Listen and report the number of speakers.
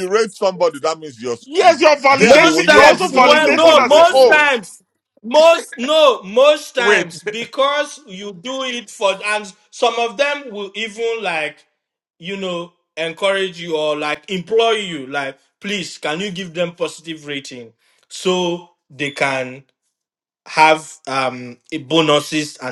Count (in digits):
3